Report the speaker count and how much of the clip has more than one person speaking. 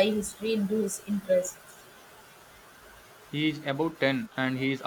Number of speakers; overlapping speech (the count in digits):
2, no overlap